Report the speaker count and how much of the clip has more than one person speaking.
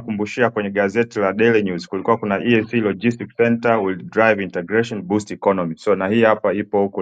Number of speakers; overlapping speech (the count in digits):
1, no overlap